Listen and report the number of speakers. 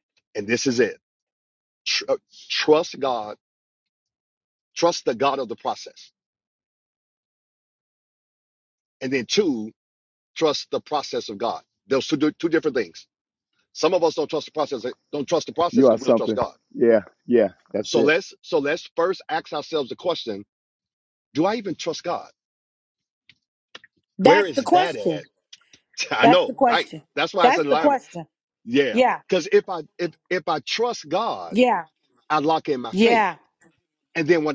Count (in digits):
3